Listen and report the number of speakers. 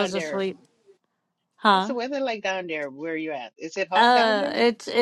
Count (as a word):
two